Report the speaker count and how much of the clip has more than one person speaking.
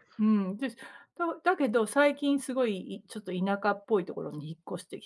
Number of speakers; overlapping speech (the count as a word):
one, no overlap